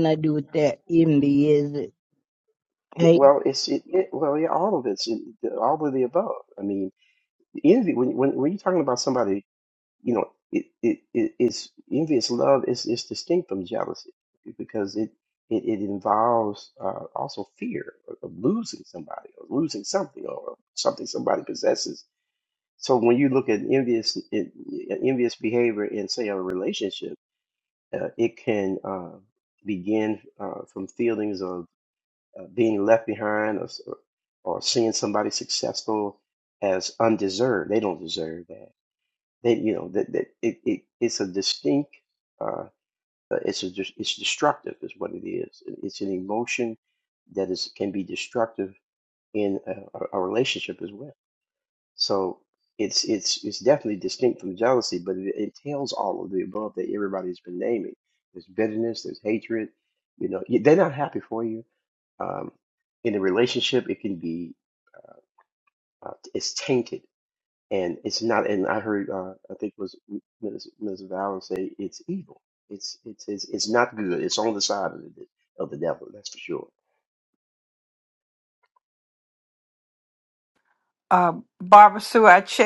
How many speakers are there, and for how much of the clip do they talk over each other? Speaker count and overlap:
3, under 1%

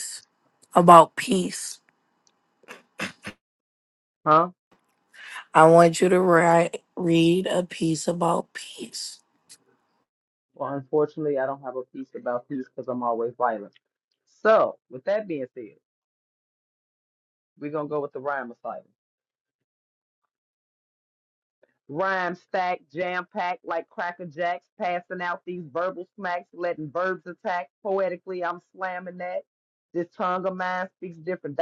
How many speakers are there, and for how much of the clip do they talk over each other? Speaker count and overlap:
2, no overlap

